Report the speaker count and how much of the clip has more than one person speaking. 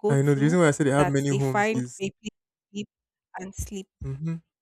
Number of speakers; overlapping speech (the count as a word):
two, about 30%